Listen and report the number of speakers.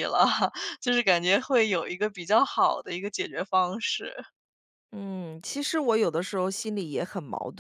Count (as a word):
two